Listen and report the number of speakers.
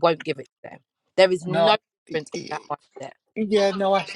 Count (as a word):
two